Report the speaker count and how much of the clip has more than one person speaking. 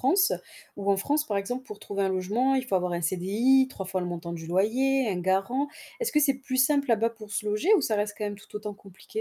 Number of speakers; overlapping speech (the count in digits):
1, no overlap